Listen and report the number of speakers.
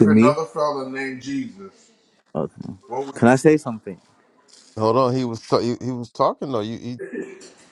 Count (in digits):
3